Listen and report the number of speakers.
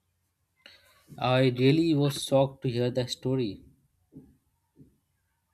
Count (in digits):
1